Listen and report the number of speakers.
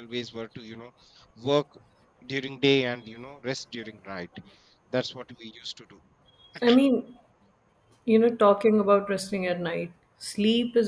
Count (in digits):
2